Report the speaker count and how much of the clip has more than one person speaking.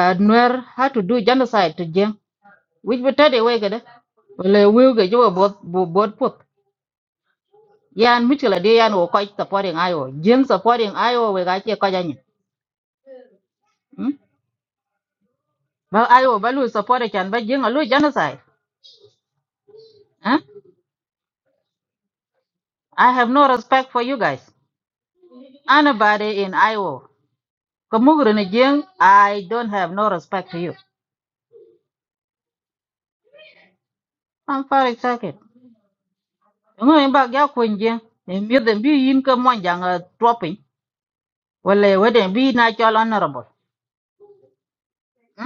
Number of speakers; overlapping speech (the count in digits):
1, no overlap